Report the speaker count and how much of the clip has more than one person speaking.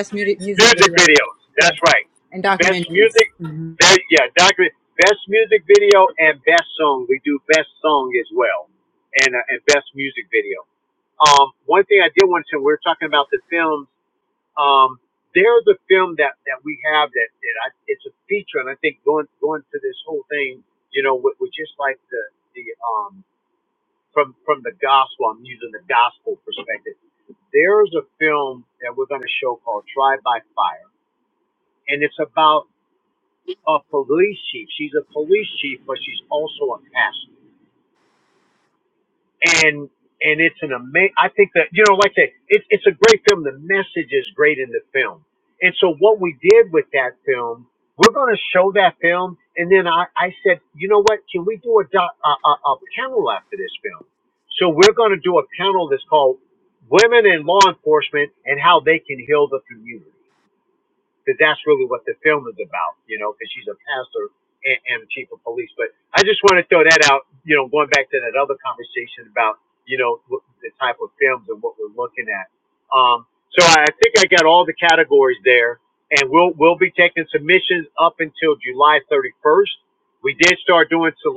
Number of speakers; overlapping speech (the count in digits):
2, about 2%